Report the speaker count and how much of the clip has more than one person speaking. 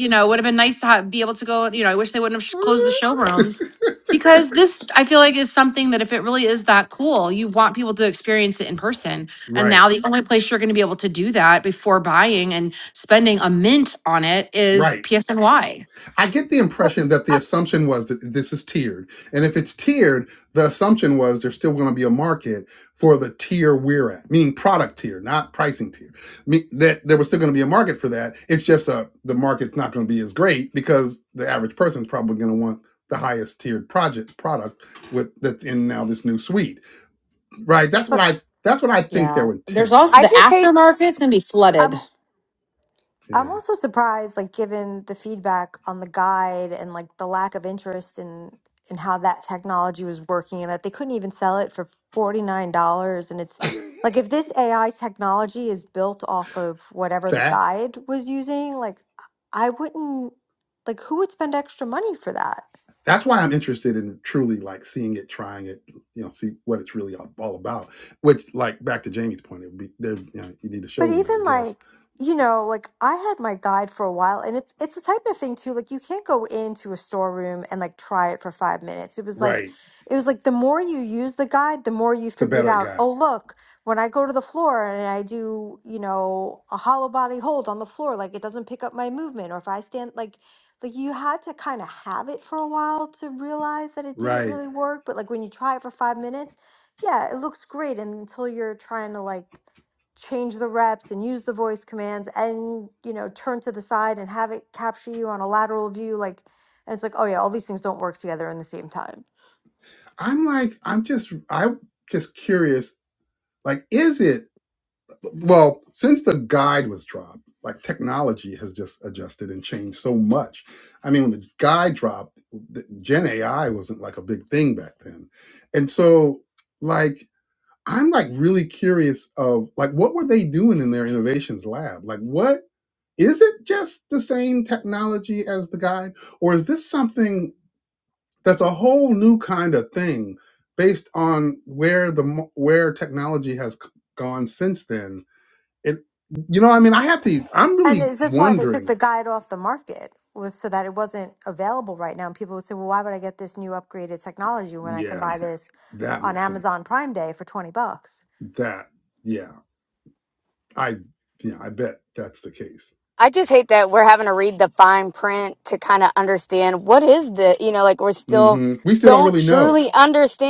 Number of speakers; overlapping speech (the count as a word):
four, about 5%